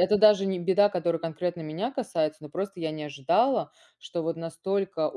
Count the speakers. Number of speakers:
1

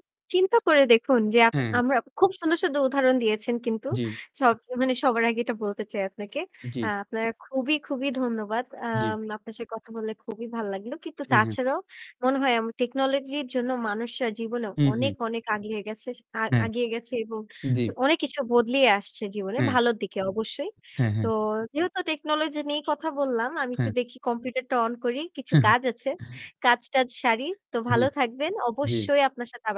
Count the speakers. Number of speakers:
2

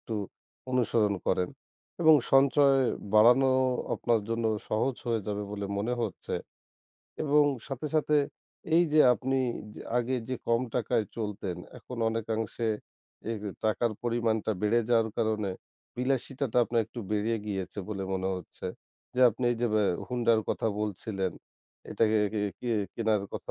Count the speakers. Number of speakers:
1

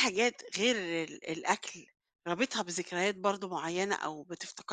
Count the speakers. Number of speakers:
1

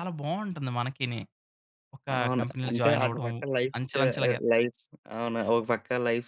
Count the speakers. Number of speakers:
2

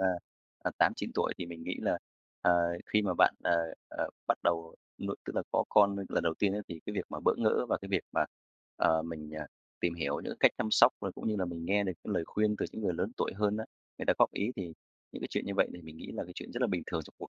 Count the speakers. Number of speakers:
1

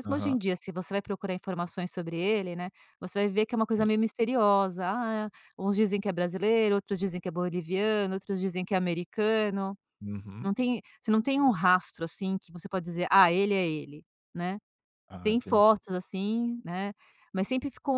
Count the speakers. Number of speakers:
2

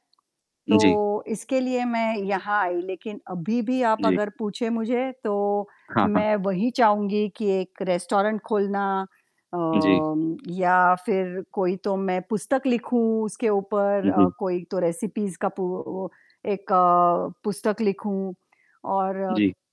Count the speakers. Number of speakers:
2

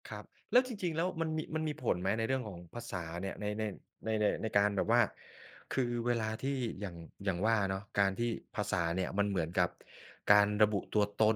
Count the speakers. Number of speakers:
1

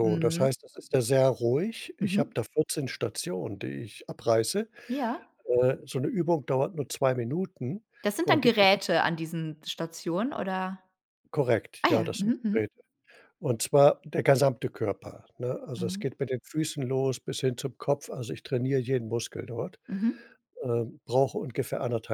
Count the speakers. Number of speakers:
2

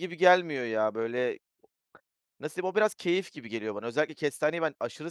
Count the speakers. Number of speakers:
1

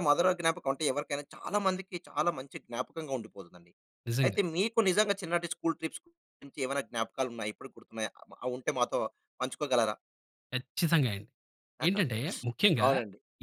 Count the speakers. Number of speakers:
2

